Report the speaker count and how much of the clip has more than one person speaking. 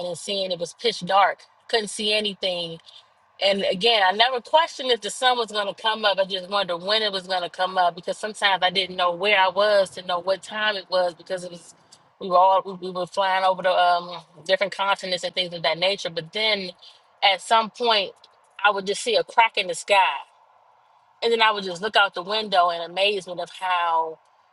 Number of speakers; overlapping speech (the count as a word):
one, no overlap